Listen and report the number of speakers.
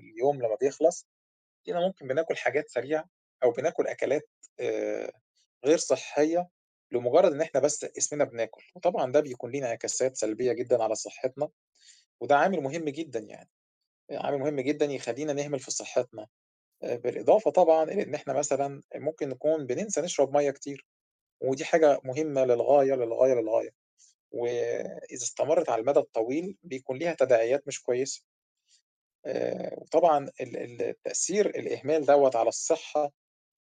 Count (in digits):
1